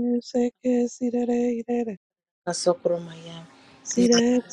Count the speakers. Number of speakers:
2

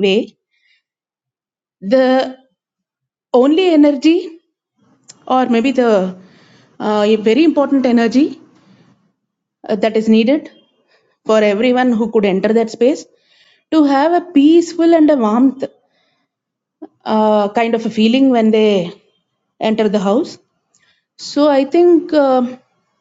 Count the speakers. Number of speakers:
1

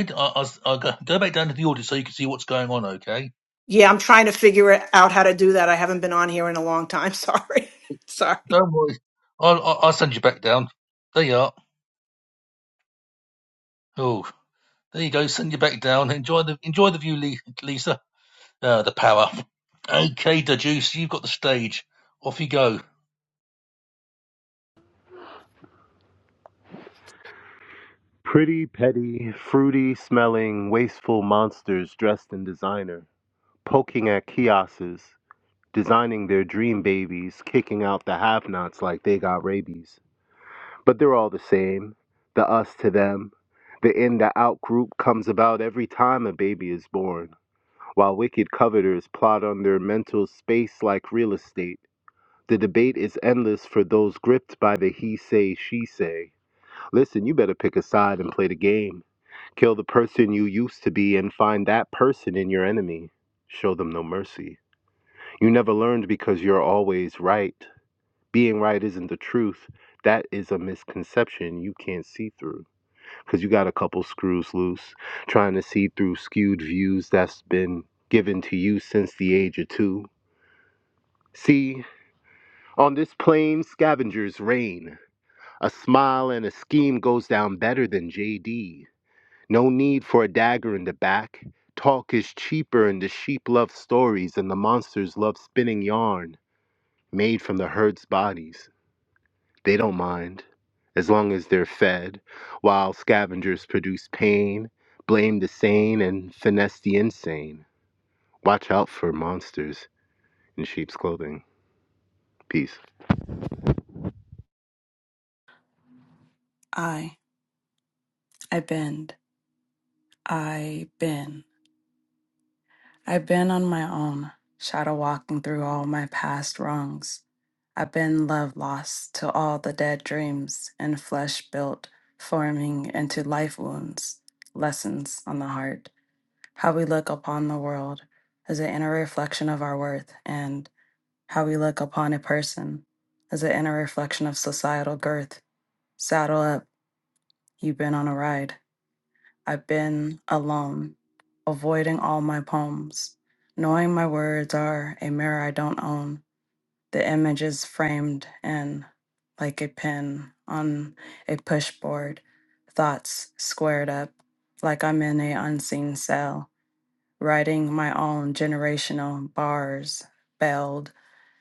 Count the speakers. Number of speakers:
4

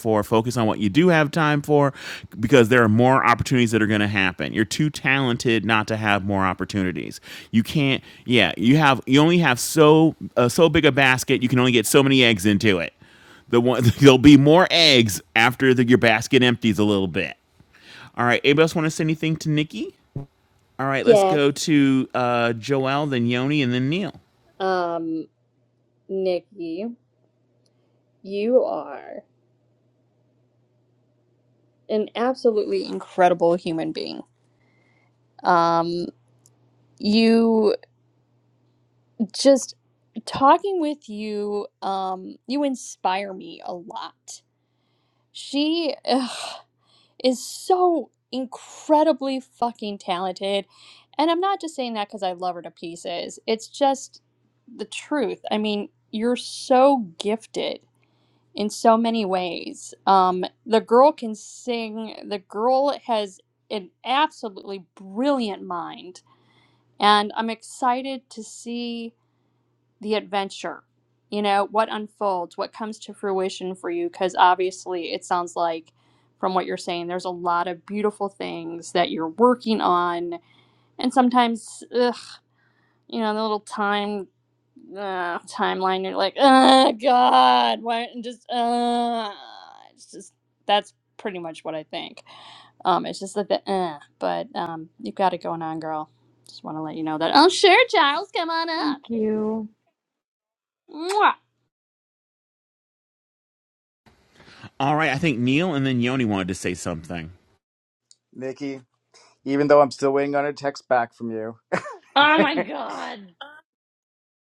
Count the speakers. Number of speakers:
4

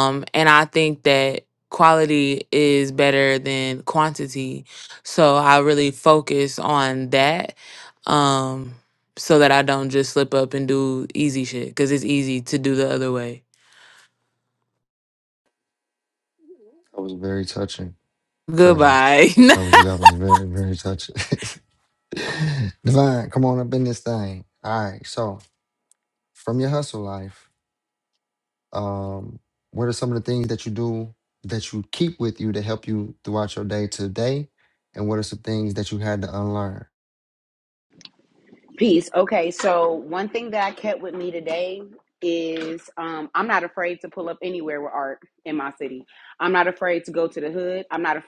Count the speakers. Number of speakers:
3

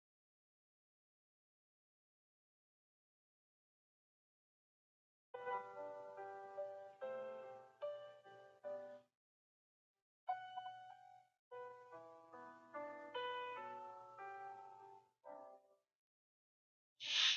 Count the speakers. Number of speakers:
0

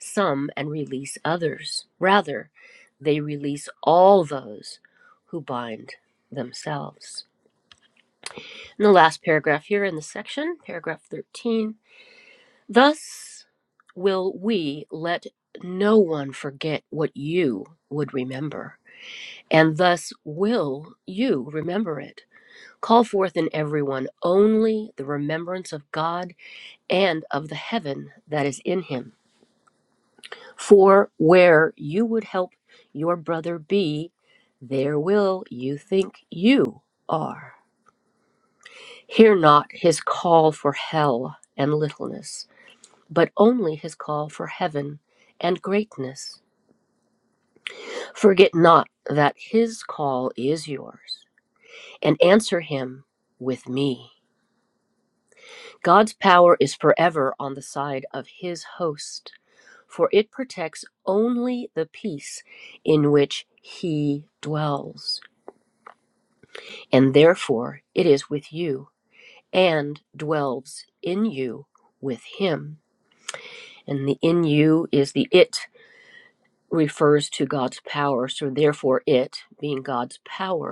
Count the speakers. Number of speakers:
1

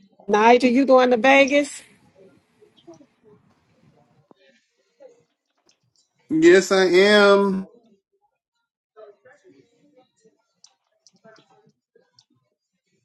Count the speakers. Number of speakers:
2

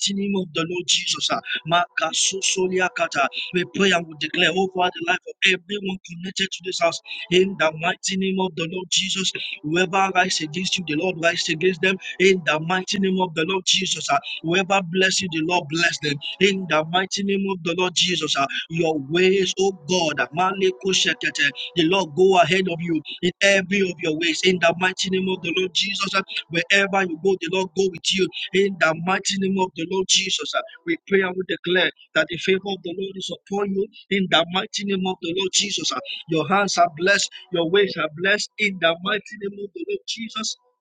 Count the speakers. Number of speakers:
1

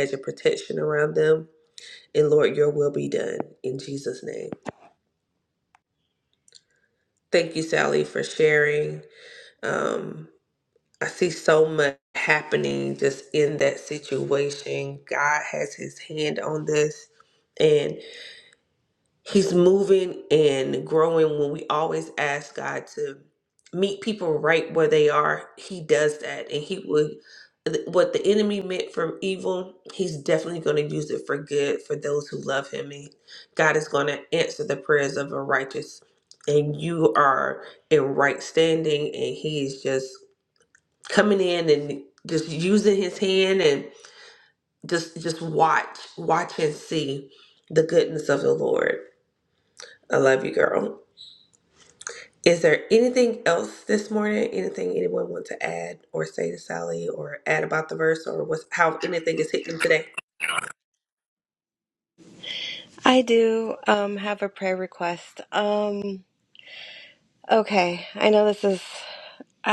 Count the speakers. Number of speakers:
2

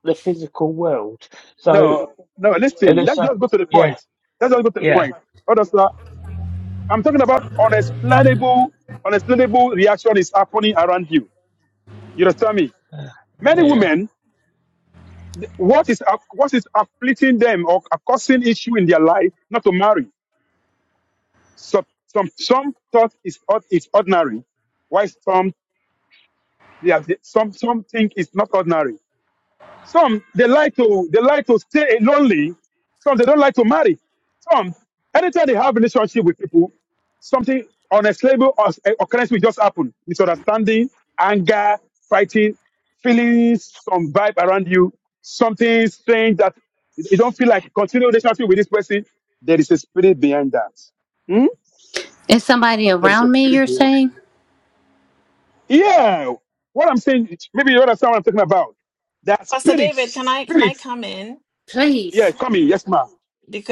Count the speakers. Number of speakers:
4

